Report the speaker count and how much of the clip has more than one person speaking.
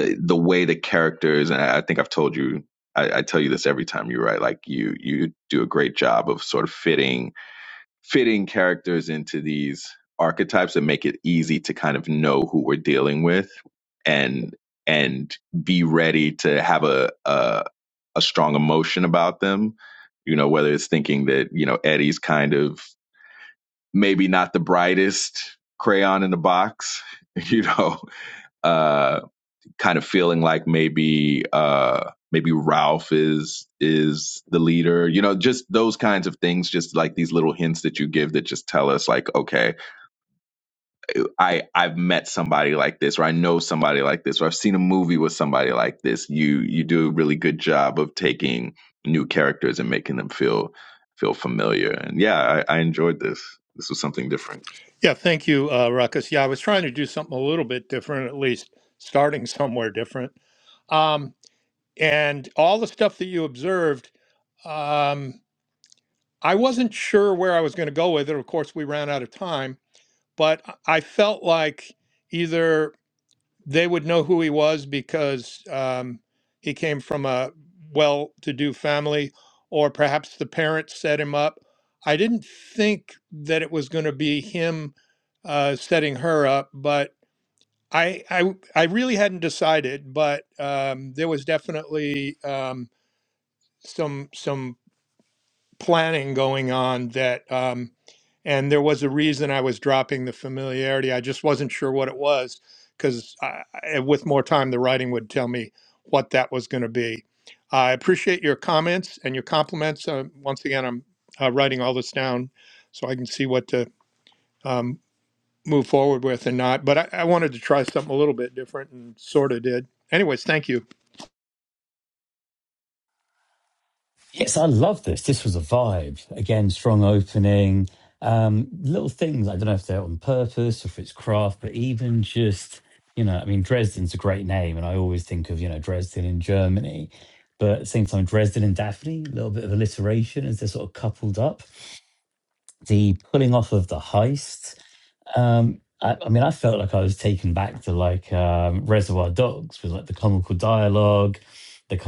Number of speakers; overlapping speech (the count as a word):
three, no overlap